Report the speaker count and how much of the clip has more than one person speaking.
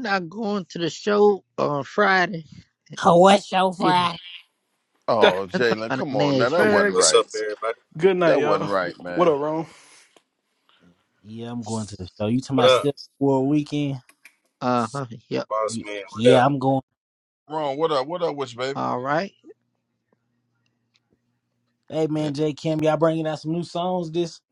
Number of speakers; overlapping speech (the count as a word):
five, about 14%